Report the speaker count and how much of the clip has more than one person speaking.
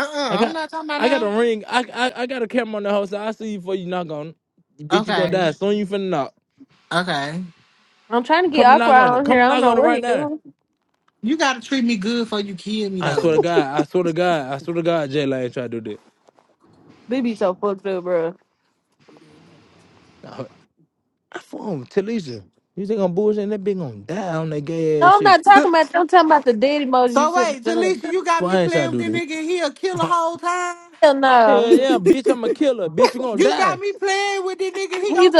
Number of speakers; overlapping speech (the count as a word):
three, about 18%